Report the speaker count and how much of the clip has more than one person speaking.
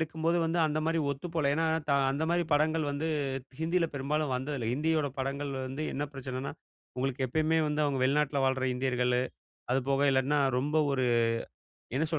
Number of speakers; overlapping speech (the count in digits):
1, no overlap